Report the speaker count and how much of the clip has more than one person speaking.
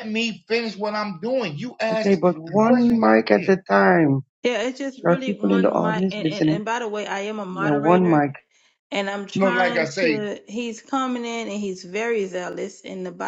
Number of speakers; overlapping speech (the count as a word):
three, about 33%